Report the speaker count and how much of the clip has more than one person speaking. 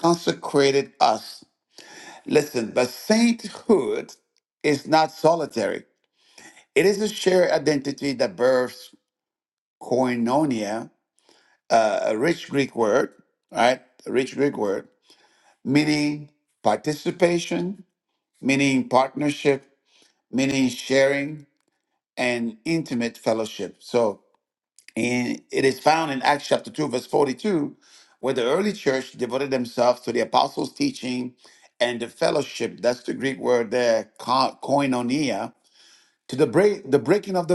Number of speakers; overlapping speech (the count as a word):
one, no overlap